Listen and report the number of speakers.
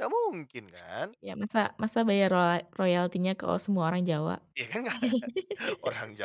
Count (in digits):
2